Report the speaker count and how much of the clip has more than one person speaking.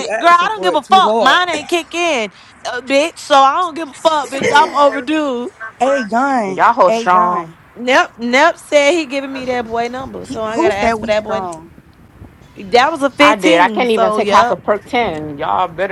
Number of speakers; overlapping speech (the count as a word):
three, about 31%